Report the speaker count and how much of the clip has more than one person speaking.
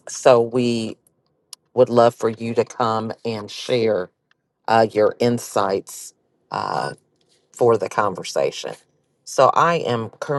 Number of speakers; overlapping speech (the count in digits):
1, no overlap